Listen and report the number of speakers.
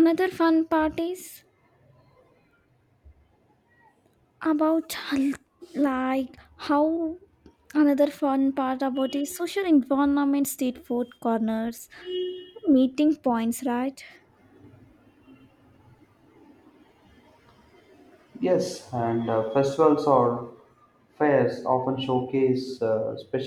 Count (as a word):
two